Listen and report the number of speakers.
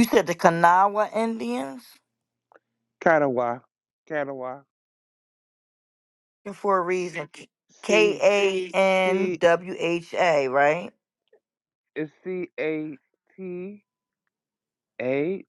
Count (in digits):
2